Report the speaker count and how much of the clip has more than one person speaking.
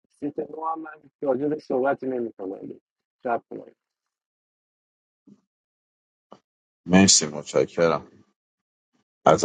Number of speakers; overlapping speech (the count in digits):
2, no overlap